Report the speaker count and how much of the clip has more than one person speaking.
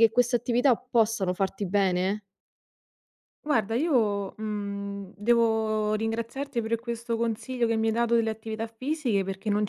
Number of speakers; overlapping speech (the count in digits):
2, no overlap